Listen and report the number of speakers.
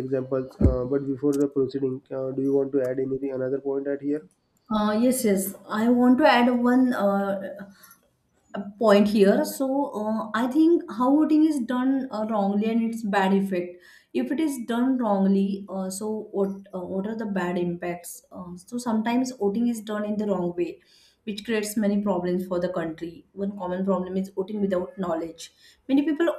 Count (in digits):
2